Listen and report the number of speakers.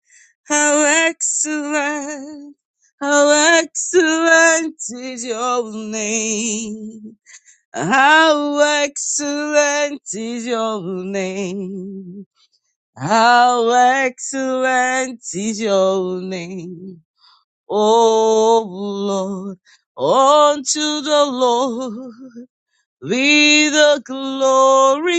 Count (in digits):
1